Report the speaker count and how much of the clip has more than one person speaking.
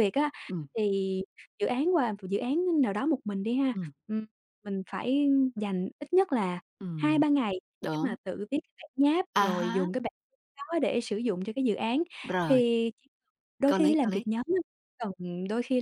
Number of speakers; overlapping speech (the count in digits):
2, about 11%